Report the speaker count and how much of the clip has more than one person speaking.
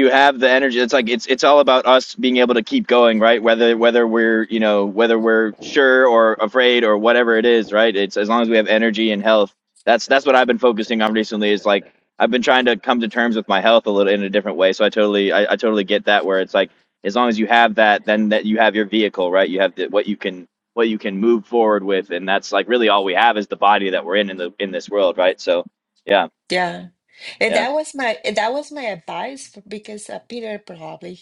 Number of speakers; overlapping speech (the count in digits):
2, about 1%